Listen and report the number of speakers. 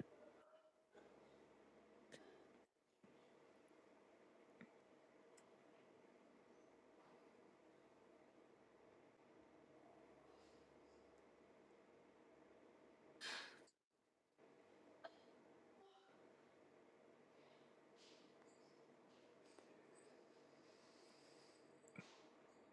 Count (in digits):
0